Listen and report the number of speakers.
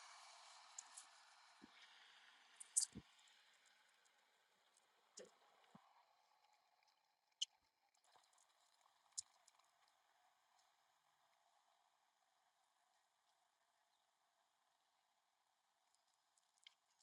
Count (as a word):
zero